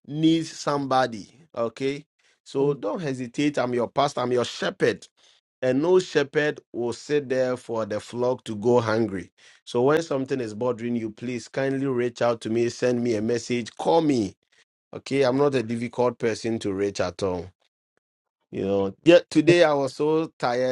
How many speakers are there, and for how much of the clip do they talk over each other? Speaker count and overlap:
1, no overlap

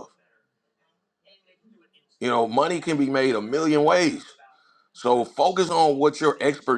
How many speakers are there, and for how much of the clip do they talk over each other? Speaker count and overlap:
1, no overlap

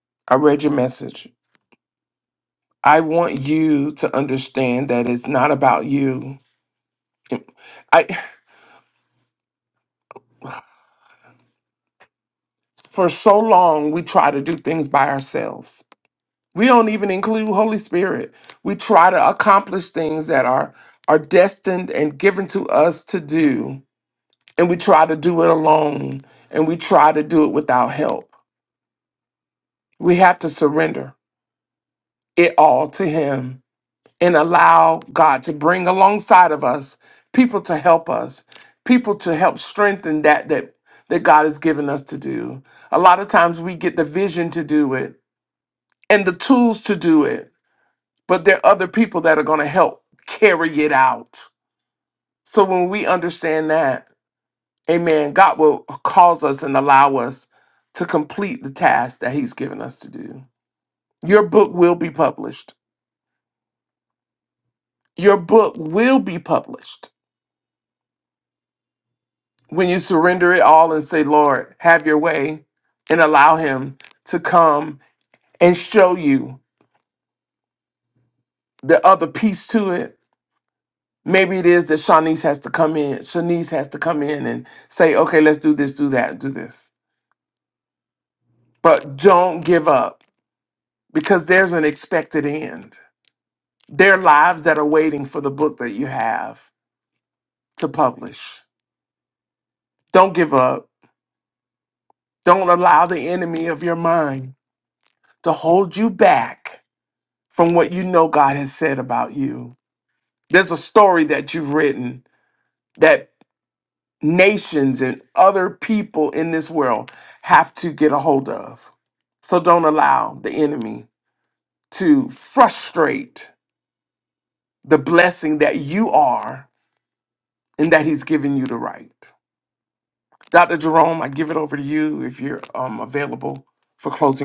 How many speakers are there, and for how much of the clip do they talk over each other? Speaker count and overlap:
1, no overlap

